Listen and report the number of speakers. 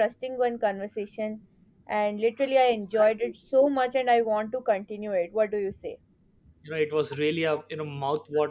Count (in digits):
2